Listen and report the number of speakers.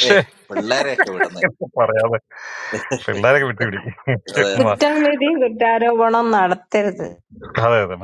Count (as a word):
three